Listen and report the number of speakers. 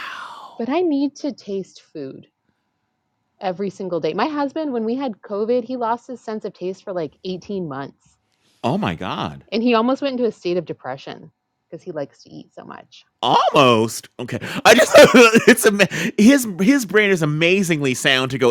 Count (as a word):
two